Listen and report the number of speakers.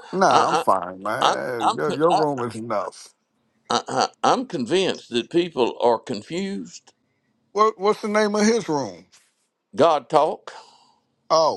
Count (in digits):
2